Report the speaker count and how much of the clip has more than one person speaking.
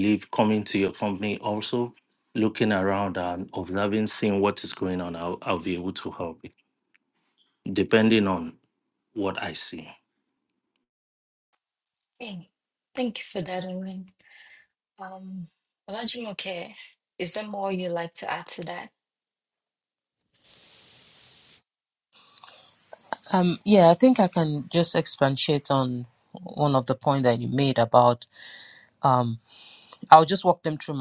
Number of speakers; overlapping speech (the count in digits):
3, no overlap